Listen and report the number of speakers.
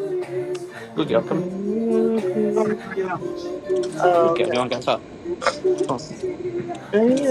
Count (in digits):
3